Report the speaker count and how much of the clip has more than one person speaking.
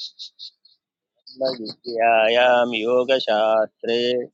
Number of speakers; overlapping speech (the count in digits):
1, no overlap